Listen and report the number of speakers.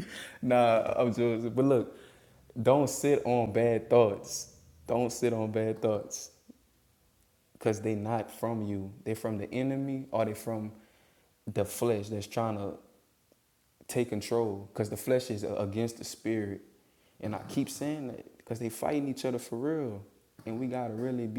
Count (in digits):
1